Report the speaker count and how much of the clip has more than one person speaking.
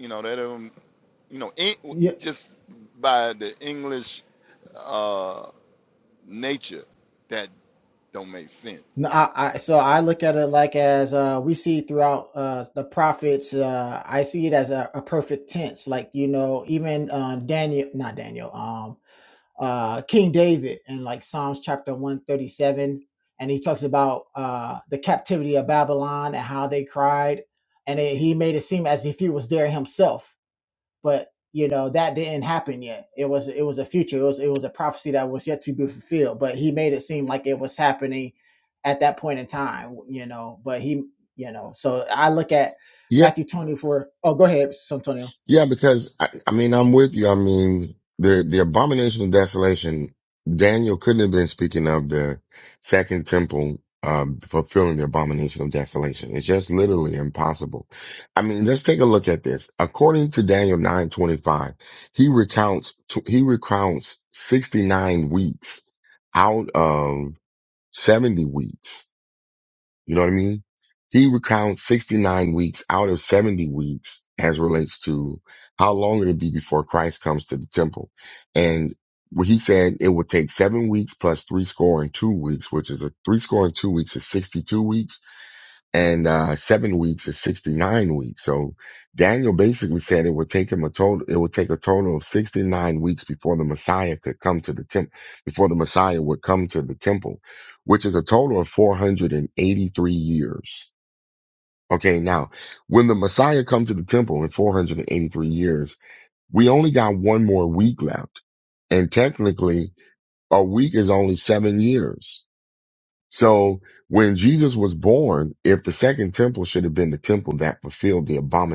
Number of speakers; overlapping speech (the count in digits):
3, no overlap